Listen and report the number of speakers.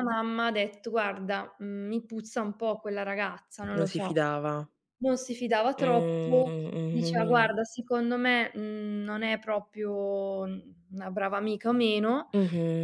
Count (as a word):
two